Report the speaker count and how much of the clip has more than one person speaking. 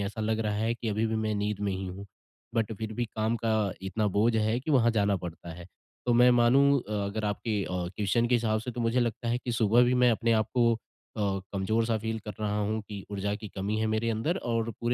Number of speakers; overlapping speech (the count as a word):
one, no overlap